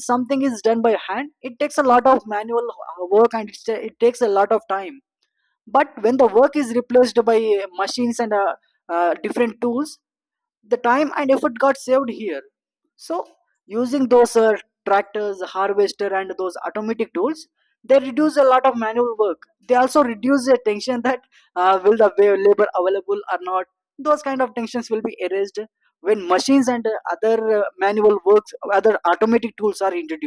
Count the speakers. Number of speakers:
1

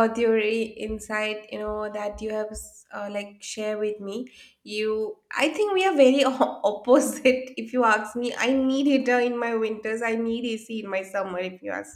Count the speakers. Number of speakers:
1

